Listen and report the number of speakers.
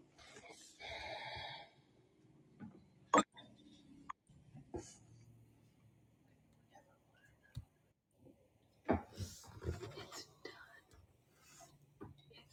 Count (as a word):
zero